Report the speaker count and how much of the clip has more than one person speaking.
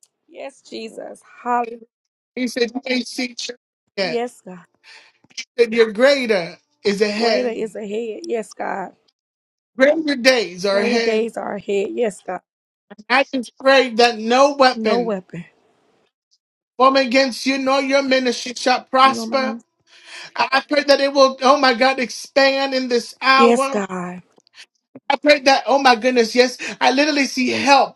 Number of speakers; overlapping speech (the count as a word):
two, about 8%